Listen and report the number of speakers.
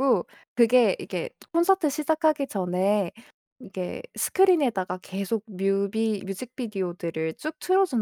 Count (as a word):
one